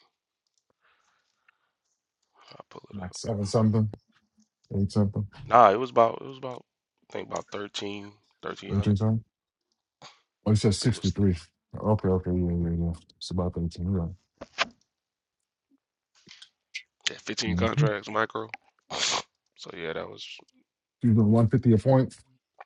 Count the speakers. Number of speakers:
two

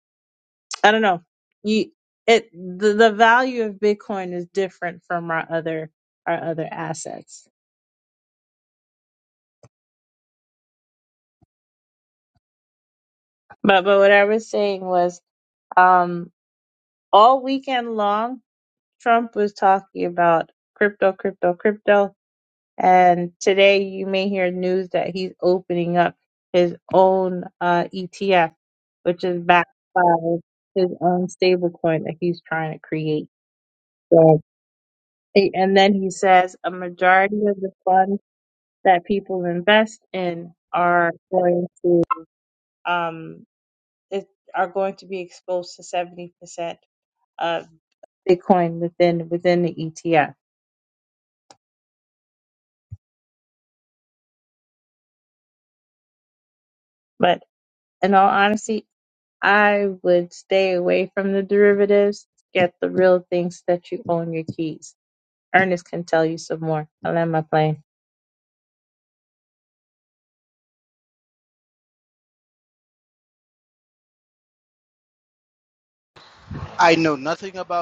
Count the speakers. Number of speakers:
two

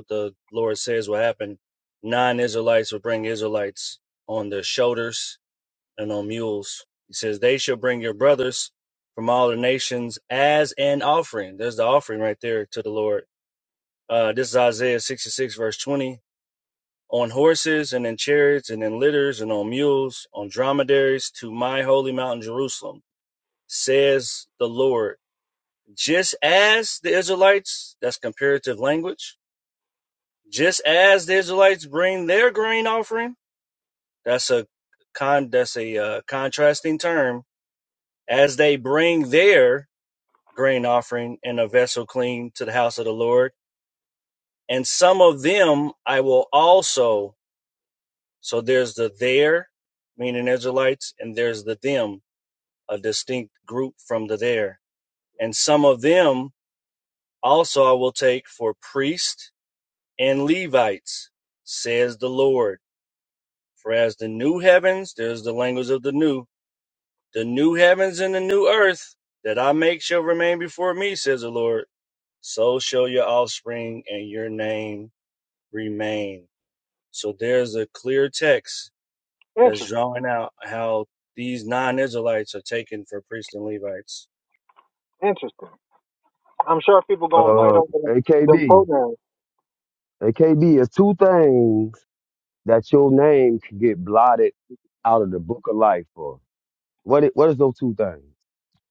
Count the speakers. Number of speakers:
three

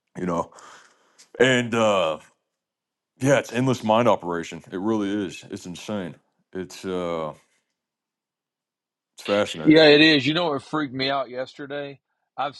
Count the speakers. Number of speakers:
two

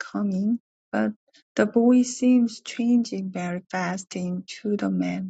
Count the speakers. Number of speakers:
one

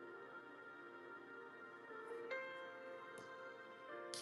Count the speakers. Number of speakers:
zero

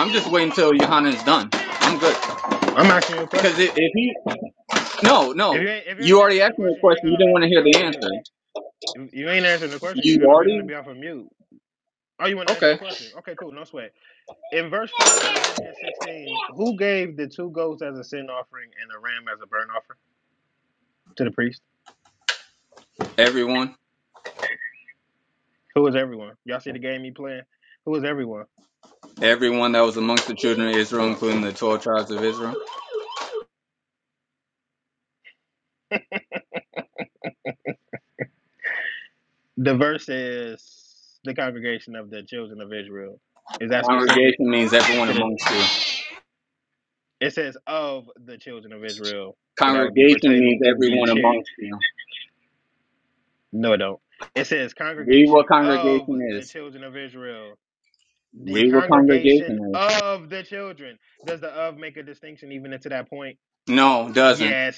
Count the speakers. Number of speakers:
two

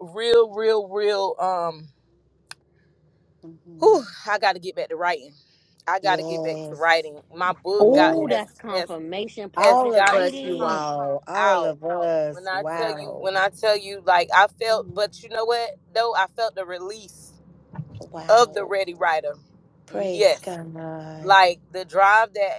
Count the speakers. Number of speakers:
three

